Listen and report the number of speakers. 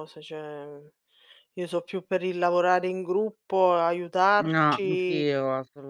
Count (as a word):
two